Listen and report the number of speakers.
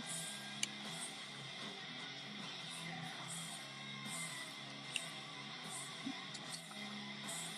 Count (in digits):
0